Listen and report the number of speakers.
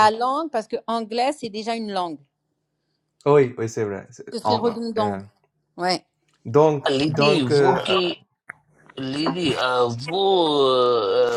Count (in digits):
3